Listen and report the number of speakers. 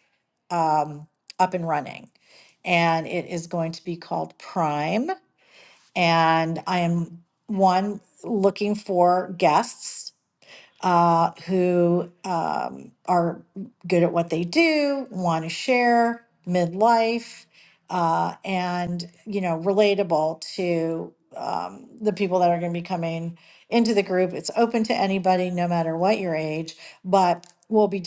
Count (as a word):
one